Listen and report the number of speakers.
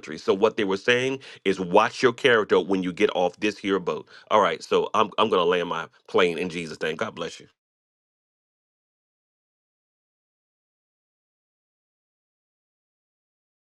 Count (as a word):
one